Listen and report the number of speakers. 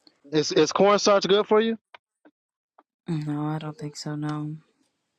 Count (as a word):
two